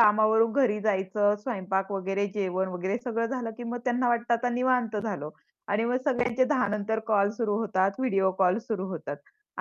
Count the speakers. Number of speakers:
one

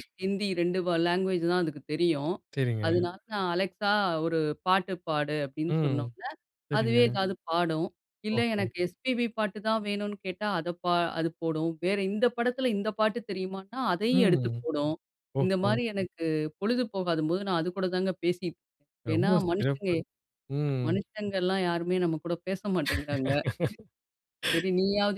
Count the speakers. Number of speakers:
two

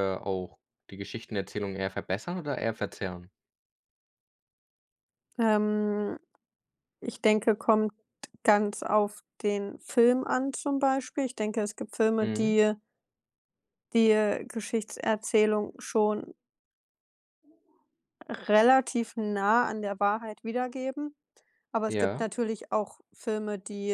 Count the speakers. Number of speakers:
two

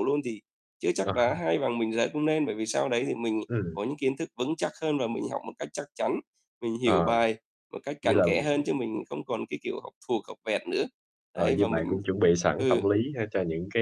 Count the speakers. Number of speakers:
two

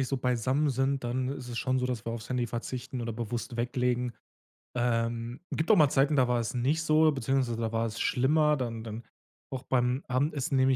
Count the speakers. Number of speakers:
one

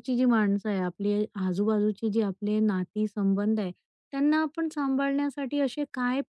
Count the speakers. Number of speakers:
one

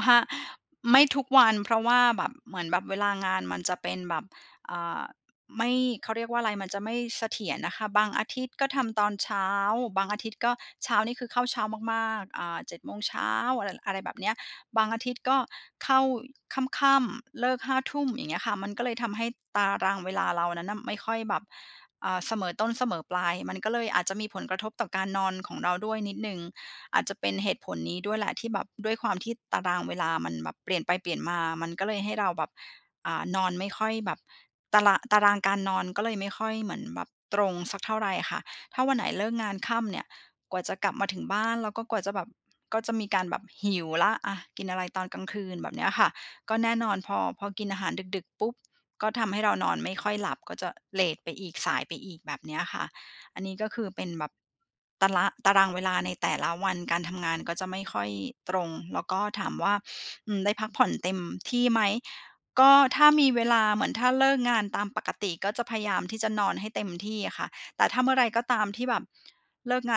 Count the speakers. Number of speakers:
one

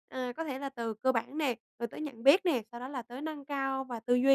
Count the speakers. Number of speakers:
one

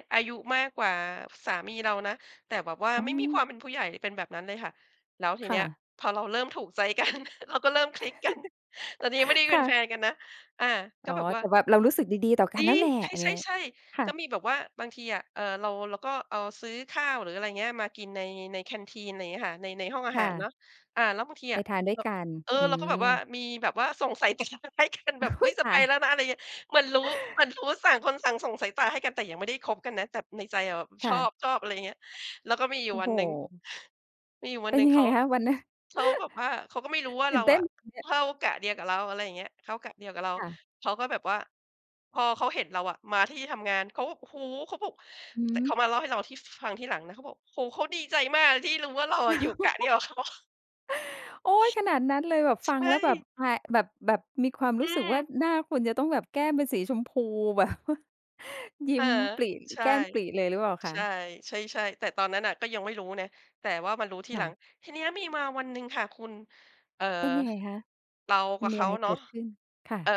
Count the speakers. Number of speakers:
two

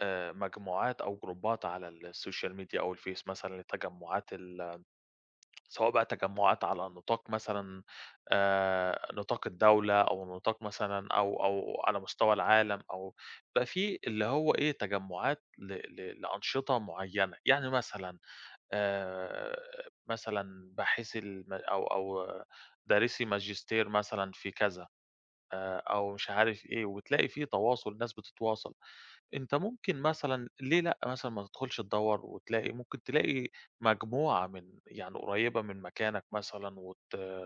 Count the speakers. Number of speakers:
one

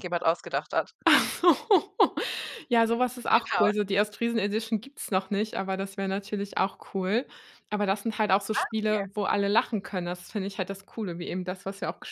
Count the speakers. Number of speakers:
two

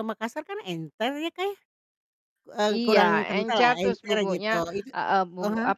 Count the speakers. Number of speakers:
two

